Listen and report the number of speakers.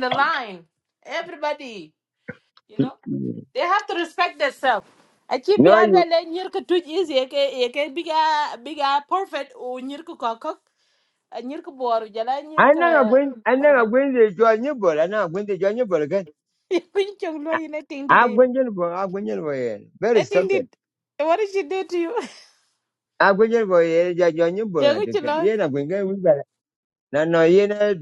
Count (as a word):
two